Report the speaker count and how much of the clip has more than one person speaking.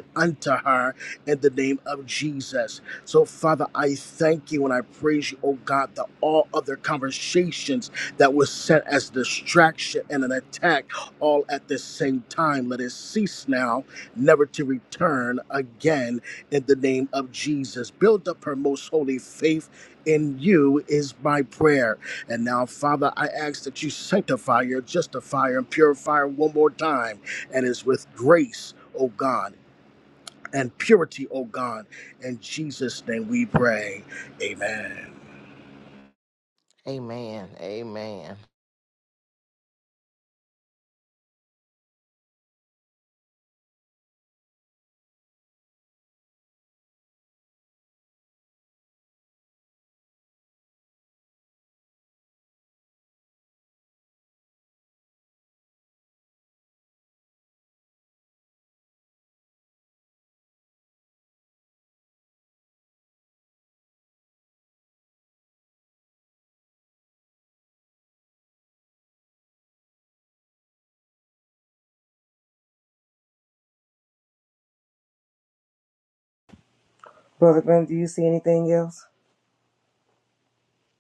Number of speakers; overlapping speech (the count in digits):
3, no overlap